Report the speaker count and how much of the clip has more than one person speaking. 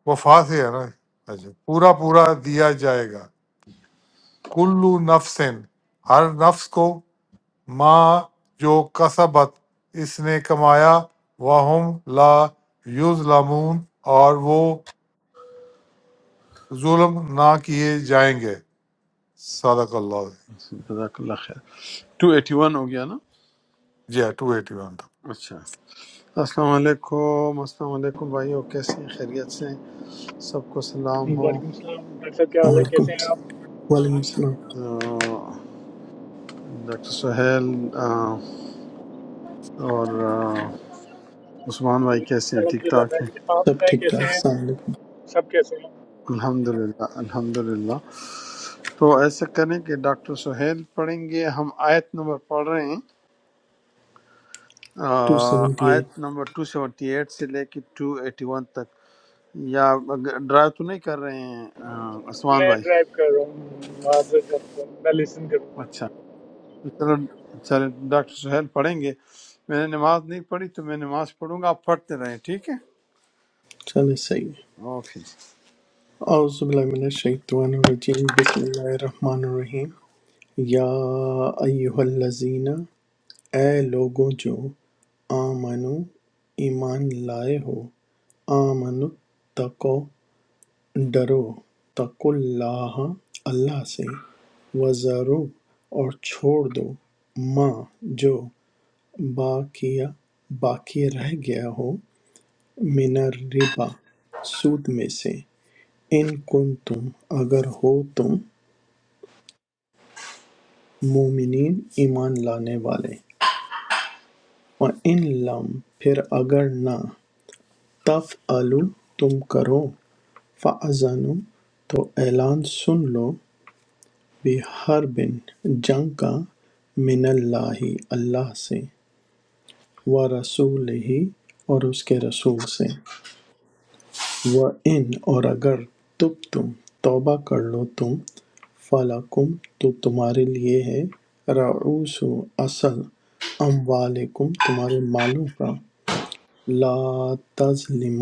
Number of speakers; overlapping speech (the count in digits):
4, about 3%